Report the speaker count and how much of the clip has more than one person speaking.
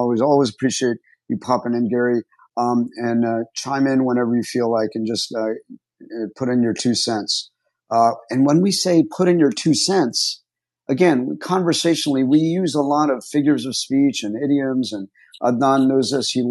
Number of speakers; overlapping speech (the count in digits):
1, no overlap